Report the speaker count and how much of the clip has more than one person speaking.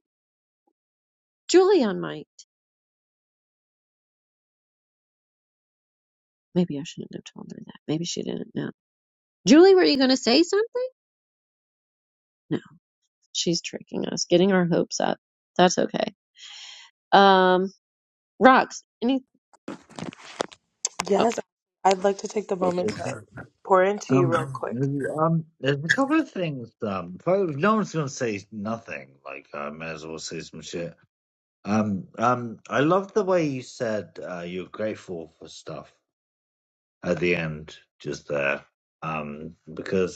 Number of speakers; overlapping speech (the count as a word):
three, about 2%